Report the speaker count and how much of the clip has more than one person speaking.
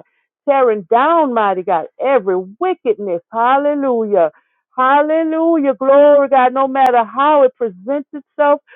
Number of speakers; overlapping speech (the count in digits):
1, no overlap